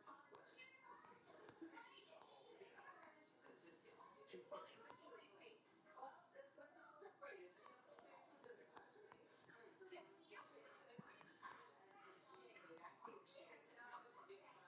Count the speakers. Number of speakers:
0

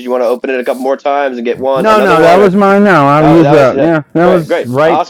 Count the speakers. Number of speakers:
2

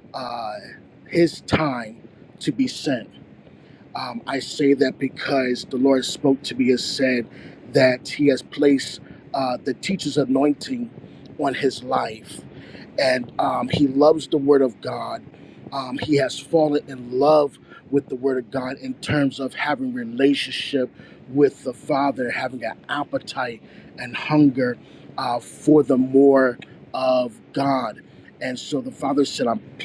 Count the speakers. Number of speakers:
1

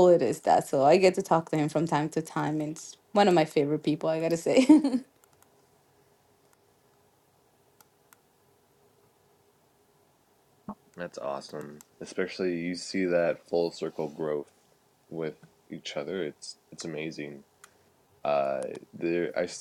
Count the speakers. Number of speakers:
2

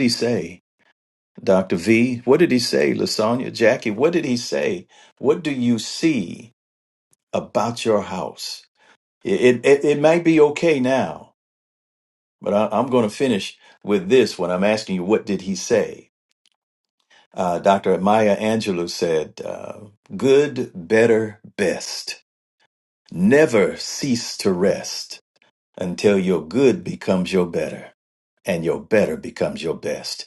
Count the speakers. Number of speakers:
1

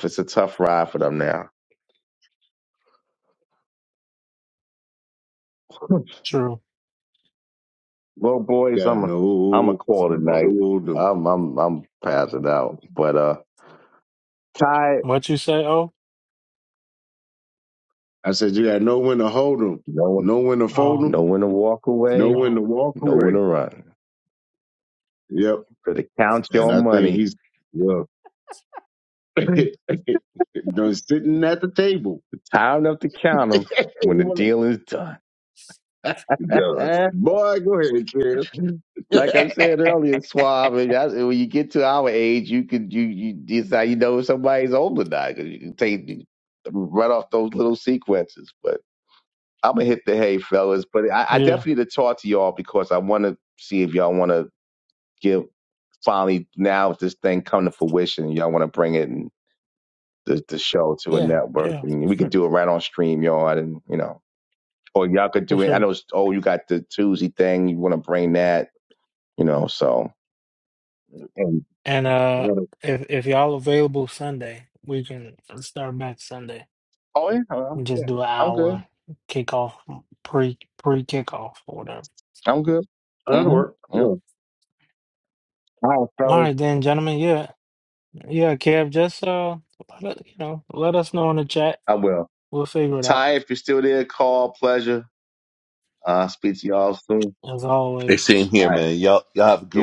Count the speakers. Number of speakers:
4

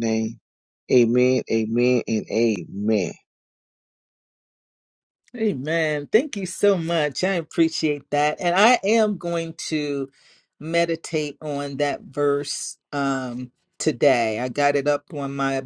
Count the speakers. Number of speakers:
2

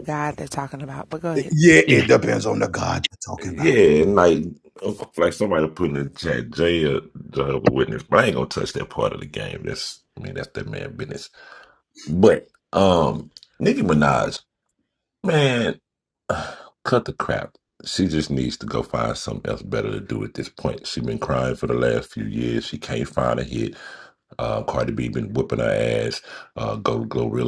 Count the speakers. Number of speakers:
3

